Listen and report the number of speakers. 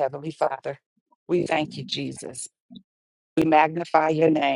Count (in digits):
1